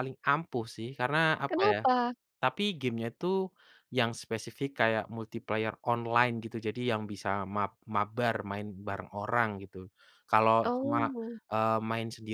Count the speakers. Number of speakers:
two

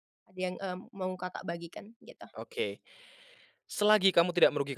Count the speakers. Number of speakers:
two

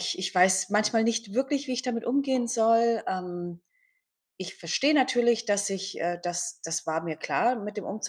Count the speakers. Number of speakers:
one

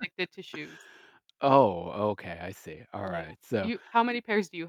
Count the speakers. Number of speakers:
two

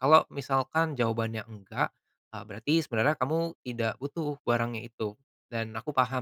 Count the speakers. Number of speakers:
one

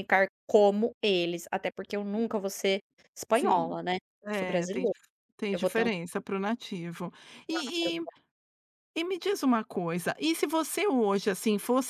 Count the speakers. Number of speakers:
two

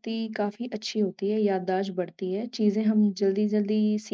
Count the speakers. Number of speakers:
one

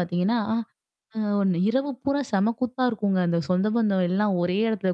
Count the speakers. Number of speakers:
one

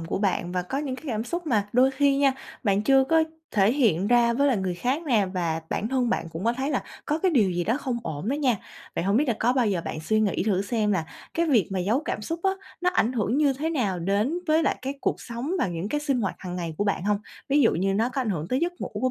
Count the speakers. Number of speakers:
one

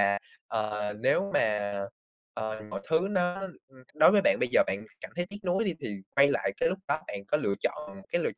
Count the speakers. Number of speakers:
one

